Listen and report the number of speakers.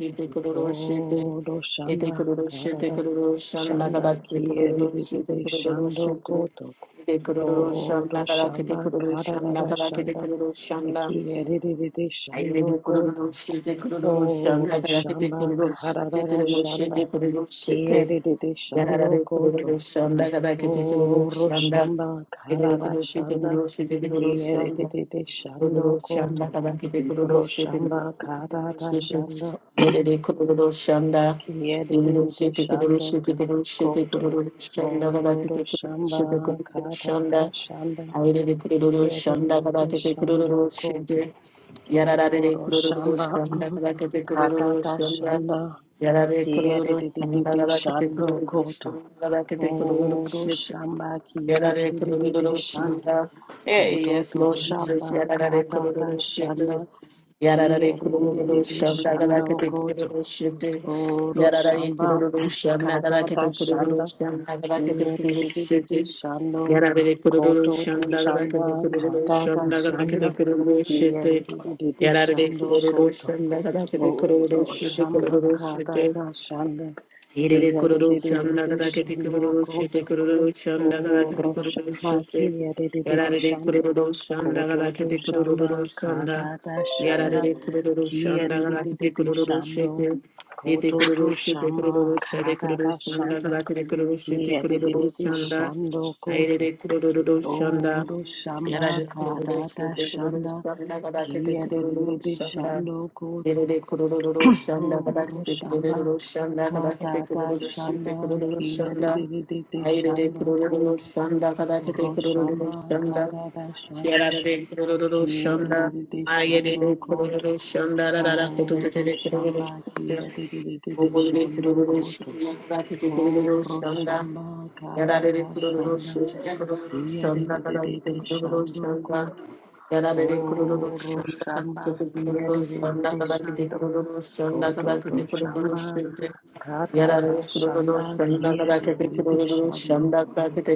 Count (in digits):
2